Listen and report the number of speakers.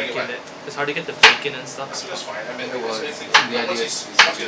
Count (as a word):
three